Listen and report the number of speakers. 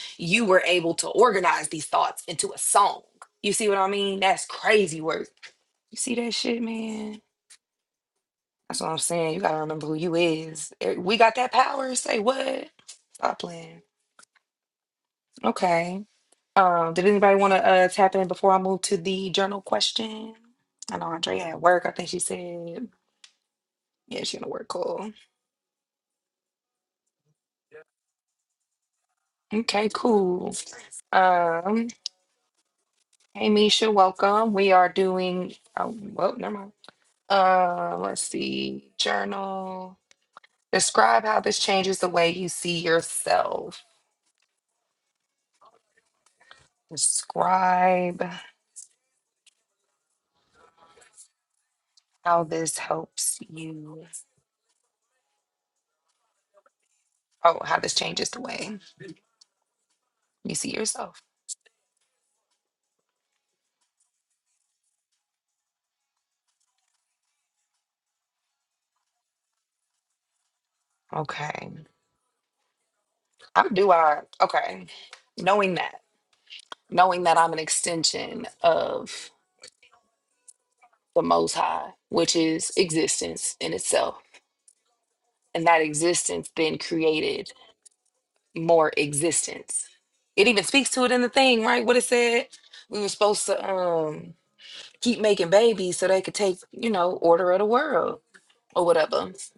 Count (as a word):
one